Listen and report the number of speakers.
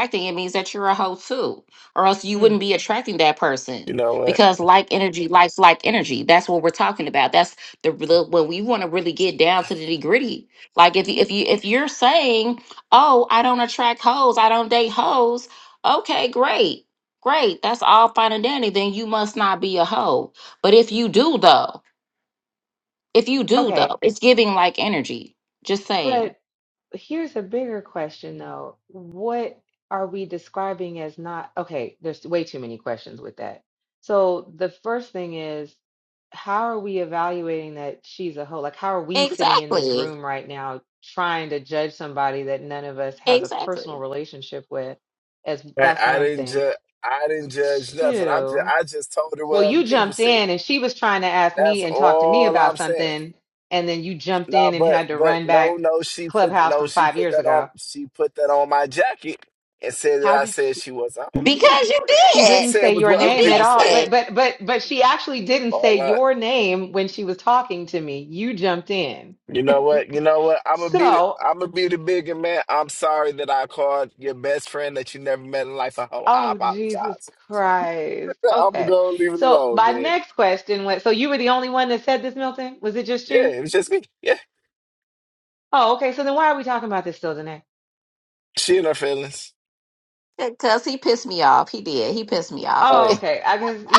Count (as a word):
three